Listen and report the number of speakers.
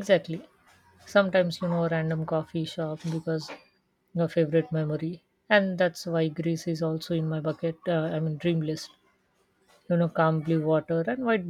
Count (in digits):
1